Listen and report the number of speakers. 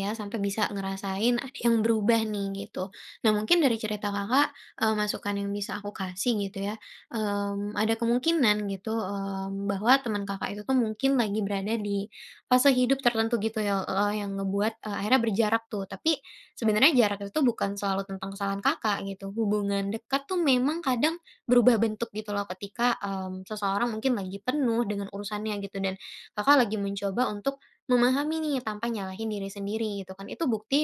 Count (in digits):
1